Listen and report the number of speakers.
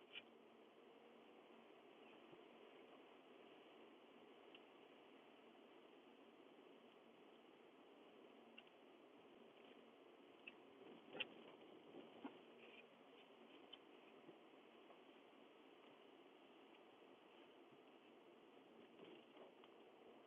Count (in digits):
0